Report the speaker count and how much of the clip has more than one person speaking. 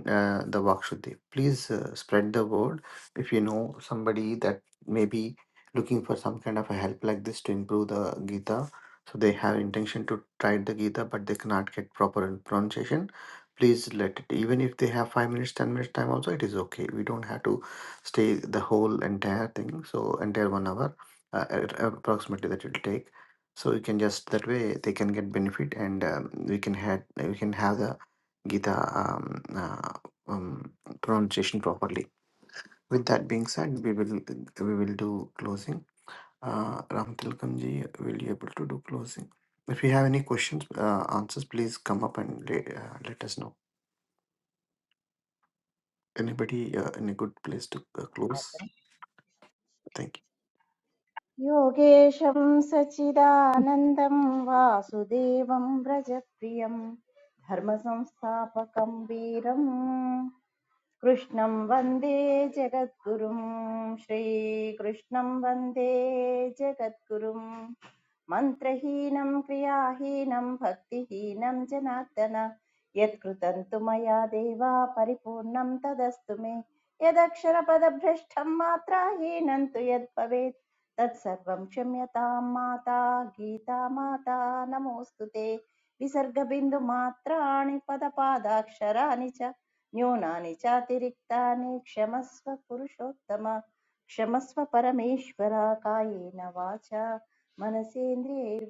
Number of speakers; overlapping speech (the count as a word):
two, no overlap